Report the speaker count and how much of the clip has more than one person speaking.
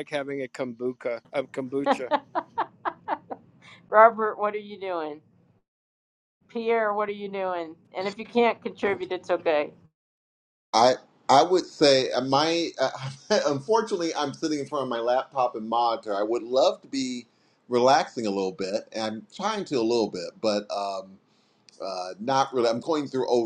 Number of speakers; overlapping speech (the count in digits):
3, no overlap